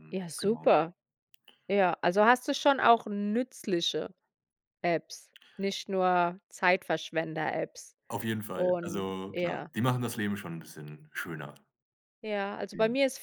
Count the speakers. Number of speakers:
2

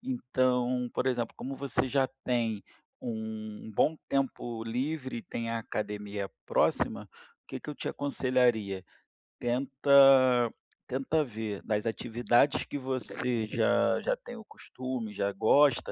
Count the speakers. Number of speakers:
1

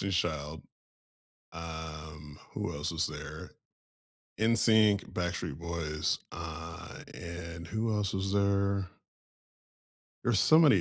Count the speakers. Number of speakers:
1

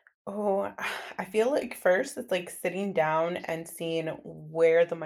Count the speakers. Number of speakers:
1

